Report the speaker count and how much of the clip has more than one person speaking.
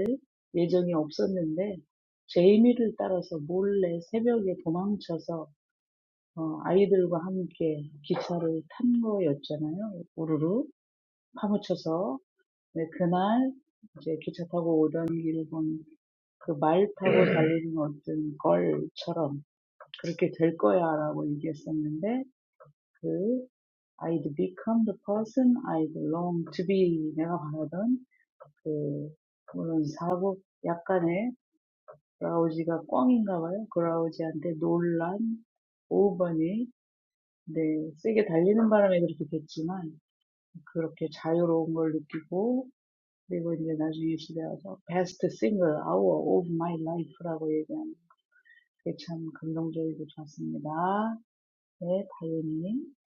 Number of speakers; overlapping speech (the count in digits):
1, no overlap